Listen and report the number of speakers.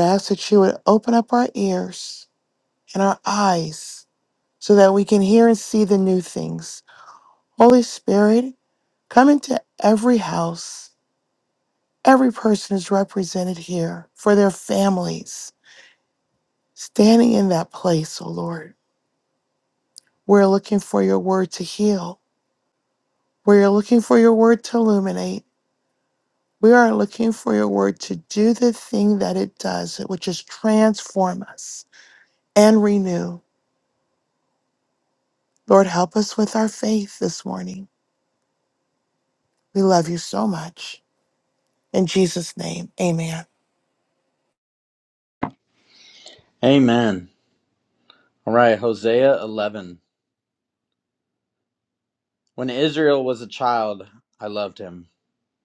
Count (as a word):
two